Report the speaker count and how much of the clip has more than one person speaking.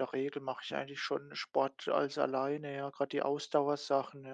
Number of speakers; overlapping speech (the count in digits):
1, no overlap